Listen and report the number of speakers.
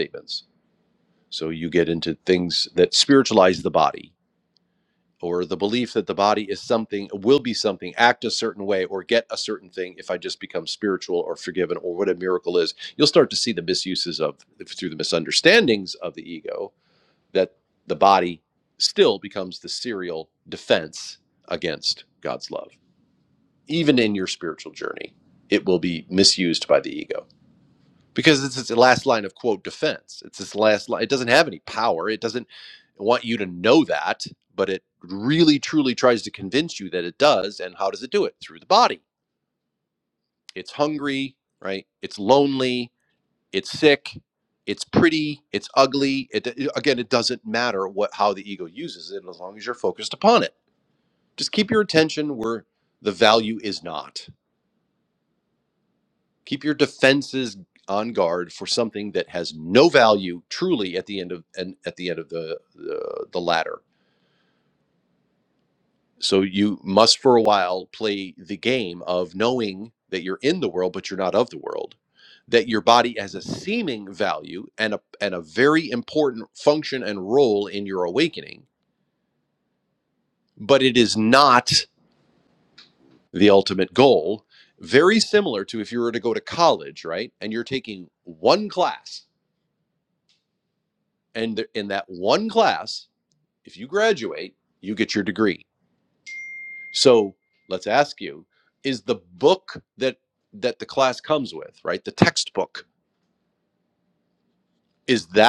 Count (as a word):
one